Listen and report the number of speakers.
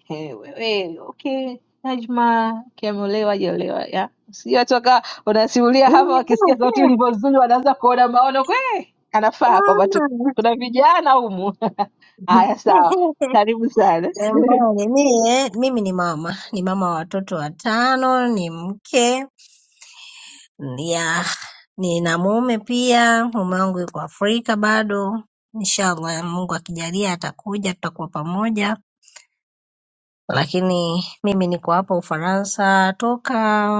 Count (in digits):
2